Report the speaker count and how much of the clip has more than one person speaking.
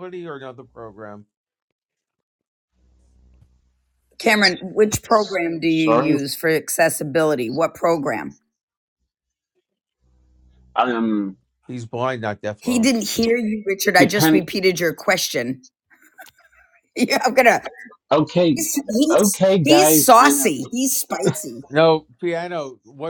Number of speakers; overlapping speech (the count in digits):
3, about 10%